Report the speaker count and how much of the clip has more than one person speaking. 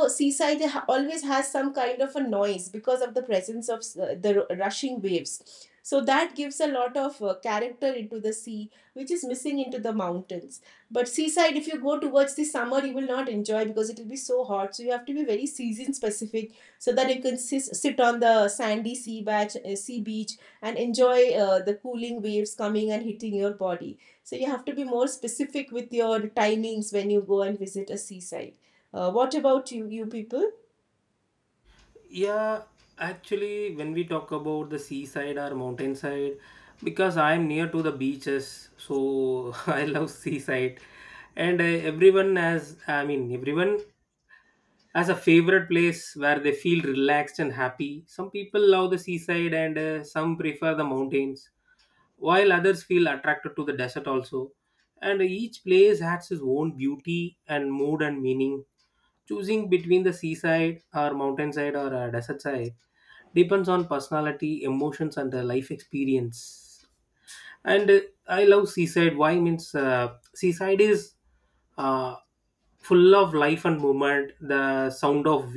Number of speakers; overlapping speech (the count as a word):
two, no overlap